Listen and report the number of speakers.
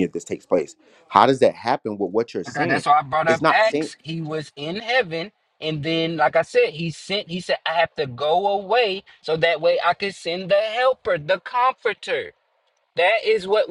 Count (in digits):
2